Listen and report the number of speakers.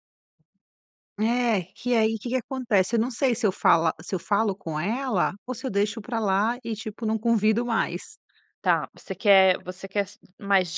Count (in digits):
2